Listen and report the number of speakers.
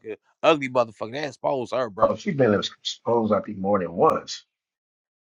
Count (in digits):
2